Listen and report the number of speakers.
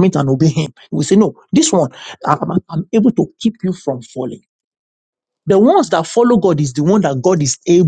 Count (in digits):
1